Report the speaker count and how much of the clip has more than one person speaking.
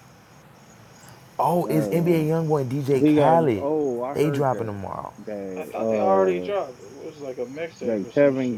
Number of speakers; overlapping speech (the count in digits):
3, about 43%